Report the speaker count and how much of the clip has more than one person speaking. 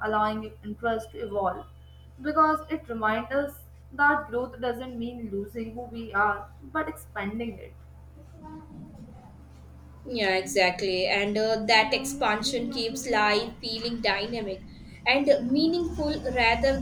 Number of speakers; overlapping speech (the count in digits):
2, no overlap